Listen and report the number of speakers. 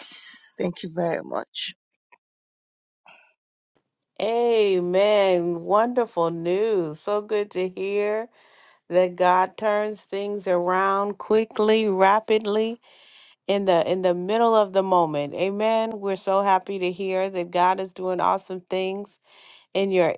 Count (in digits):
2